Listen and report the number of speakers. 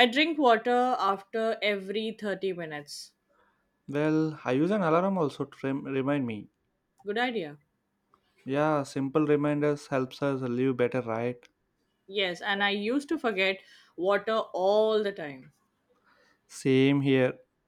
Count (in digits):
2